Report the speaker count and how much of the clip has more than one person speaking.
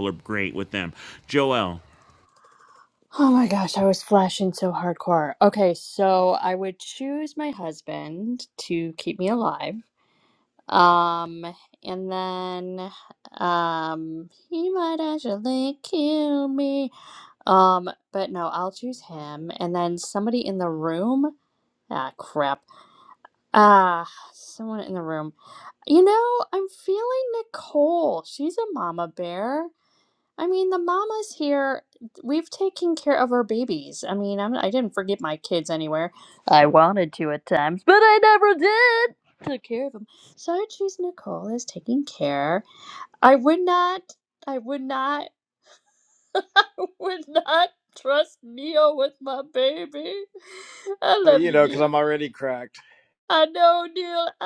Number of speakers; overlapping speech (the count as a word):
three, about 1%